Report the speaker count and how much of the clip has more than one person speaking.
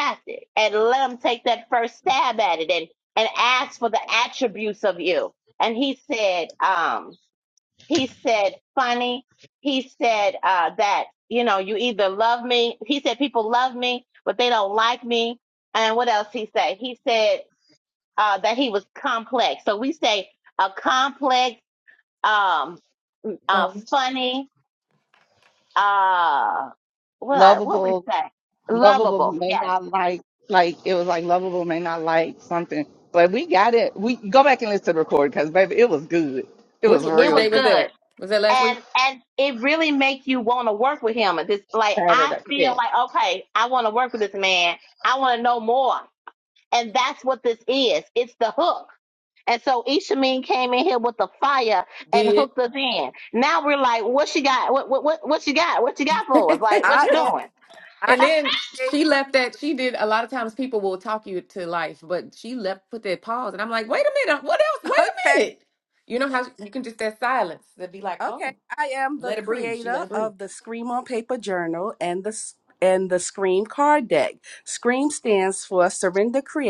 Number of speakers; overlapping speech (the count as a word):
four, about 9%